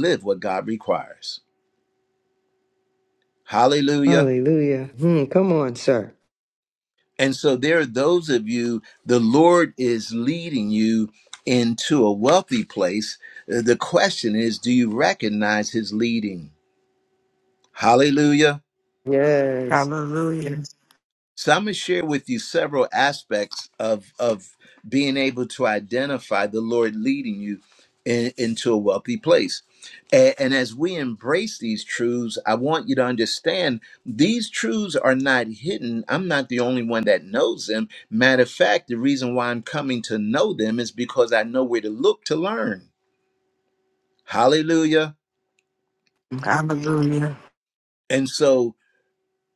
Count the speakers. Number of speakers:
3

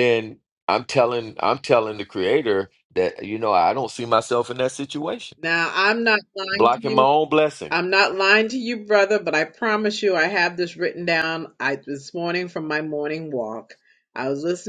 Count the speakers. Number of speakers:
2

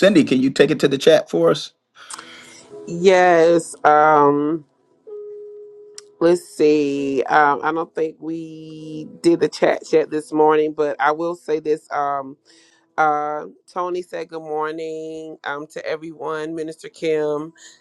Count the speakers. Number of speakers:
2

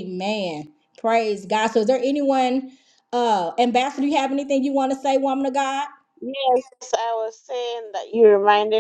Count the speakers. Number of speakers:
2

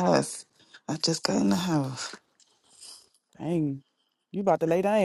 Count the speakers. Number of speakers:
2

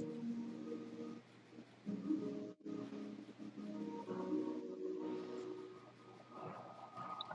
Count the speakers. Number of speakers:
0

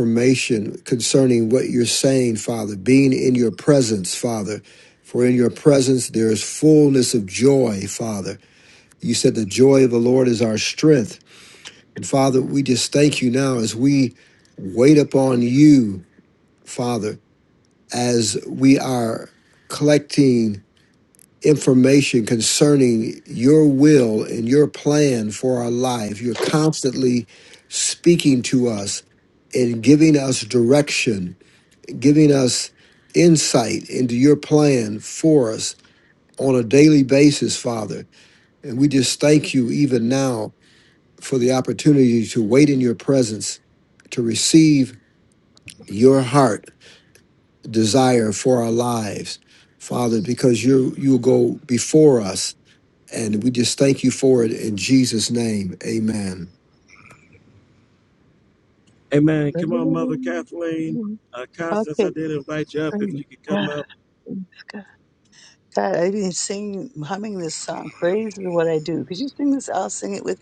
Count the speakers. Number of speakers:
3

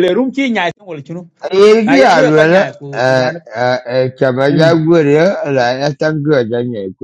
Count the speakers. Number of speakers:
2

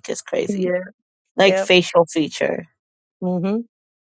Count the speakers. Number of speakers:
2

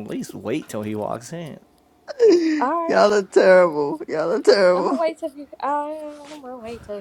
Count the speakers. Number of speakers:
3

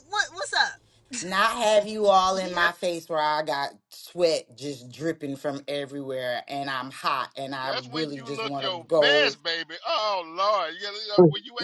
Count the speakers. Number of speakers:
3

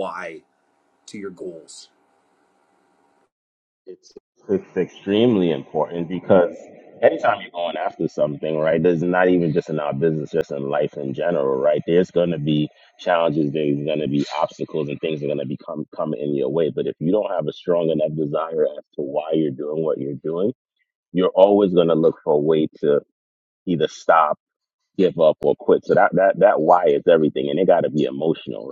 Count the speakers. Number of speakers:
2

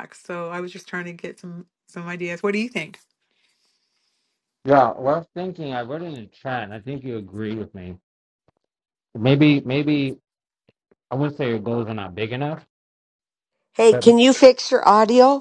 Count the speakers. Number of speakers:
3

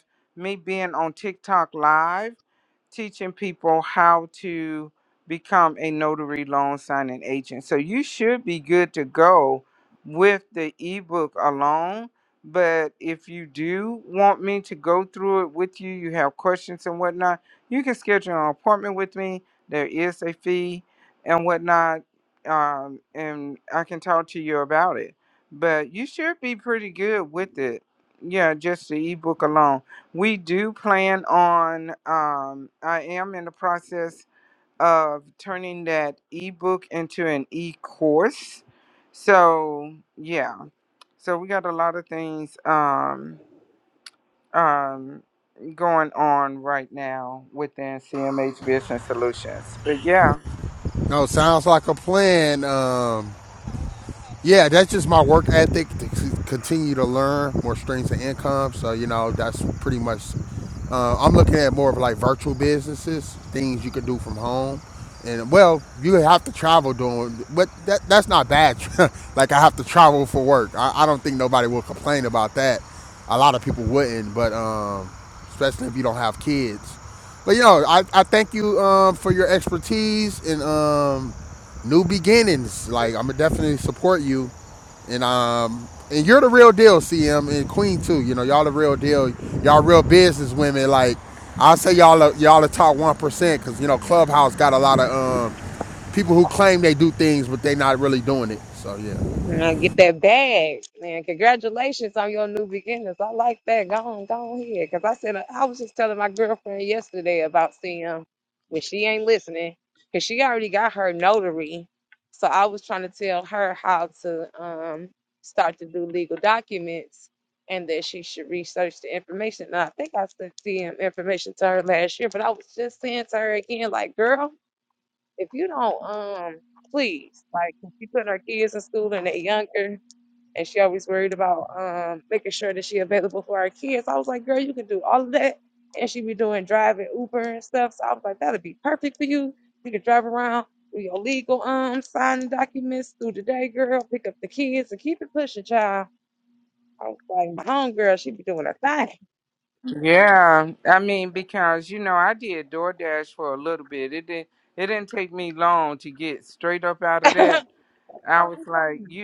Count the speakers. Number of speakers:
3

